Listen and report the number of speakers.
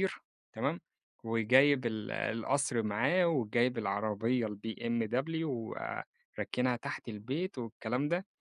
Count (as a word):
one